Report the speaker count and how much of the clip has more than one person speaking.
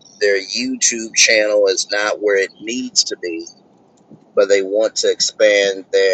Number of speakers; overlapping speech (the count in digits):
1, no overlap